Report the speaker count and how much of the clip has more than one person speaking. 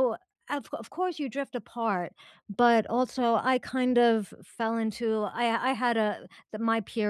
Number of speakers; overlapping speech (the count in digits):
1, no overlap